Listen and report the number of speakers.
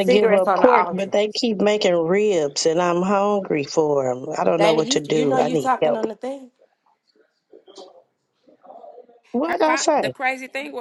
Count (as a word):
three